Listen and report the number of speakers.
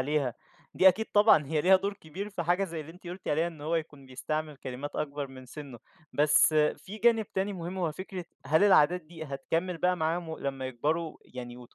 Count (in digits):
1